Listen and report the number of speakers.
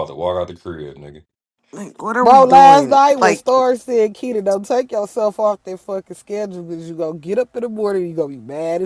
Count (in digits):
3